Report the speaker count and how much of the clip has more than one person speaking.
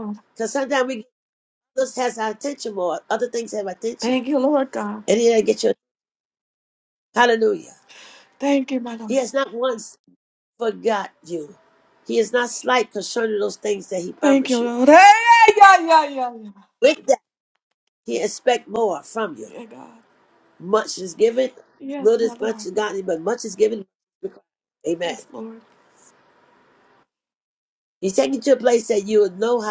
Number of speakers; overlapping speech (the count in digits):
2, about 5%